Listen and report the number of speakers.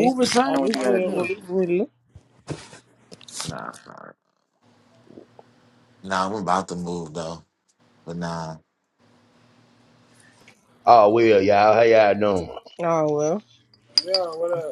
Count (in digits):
4